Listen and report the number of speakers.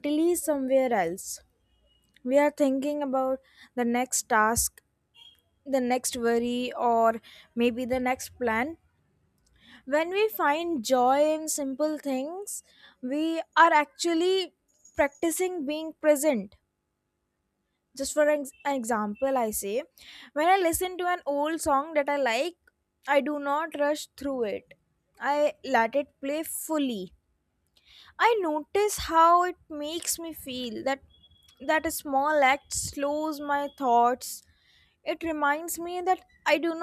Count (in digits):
1